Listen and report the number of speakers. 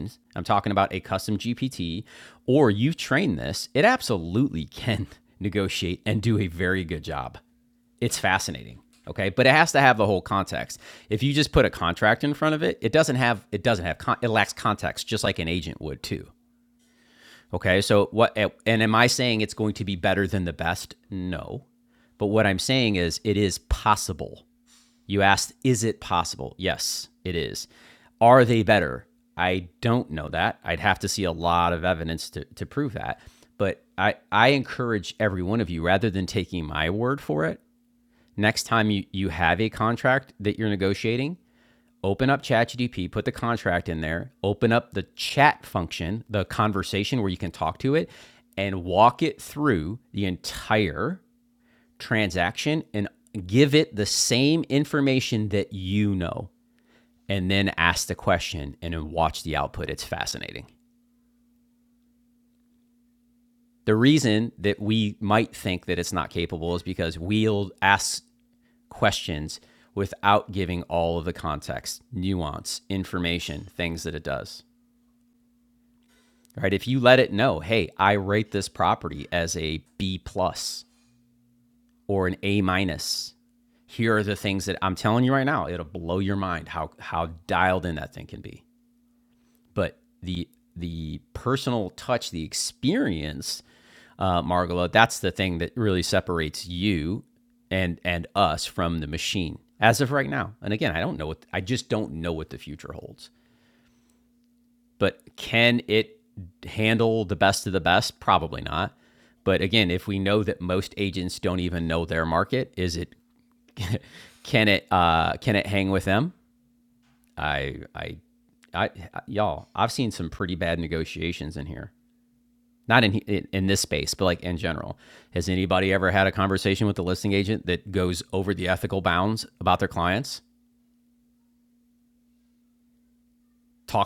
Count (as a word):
one